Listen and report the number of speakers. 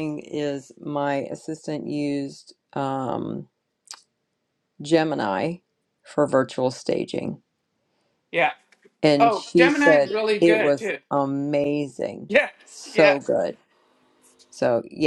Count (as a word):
two